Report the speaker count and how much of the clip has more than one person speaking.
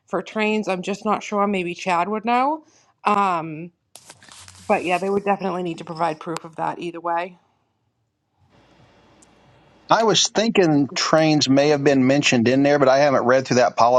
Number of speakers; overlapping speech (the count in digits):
2, no overlap